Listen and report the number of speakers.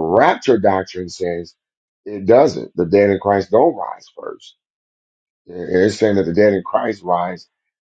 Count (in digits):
1